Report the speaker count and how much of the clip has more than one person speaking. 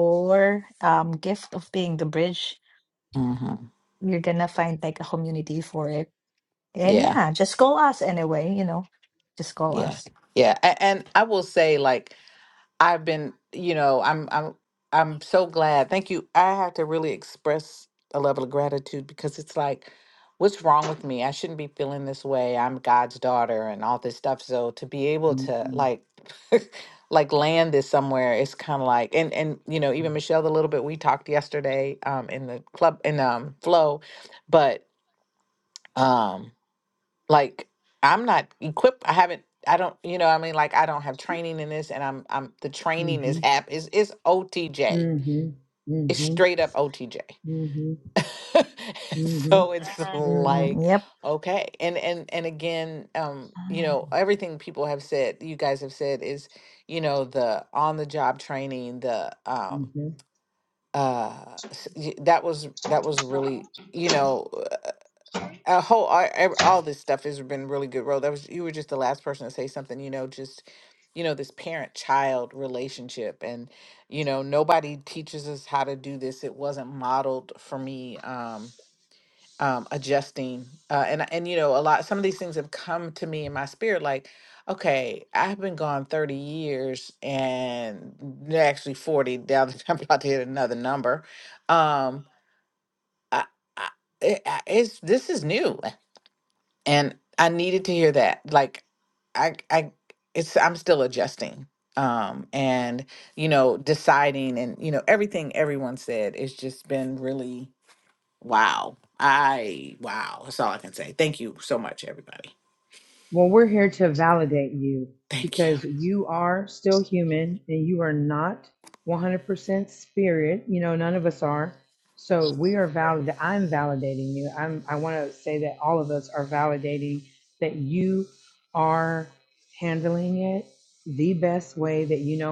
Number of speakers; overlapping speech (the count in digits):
3, about 3%